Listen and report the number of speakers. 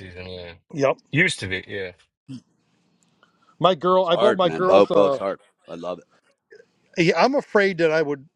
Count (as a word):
three